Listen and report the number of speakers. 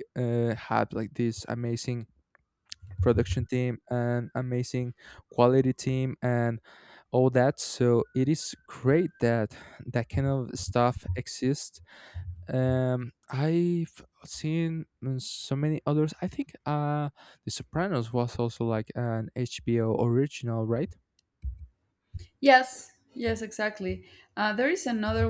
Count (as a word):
two